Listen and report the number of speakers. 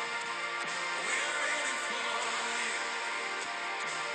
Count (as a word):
zero